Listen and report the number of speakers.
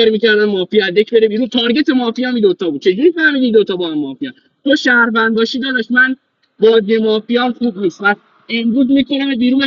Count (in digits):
1